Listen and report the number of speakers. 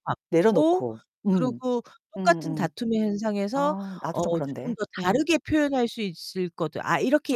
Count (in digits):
2